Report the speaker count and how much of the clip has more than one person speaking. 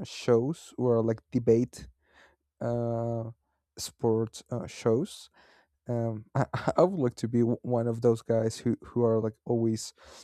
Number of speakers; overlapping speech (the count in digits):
1, no overlap